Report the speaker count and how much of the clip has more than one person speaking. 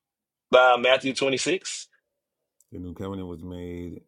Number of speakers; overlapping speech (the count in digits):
2, no overlap